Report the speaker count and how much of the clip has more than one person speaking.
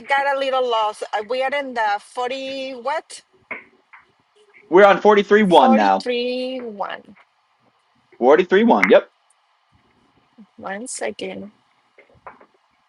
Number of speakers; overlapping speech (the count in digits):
2, about 3%